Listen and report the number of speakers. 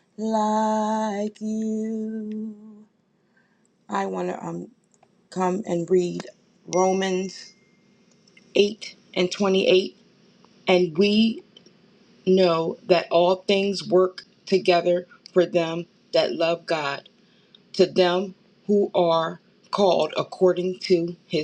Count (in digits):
1